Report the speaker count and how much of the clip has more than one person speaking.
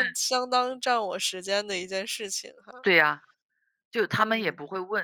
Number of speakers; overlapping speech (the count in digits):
2, about 6%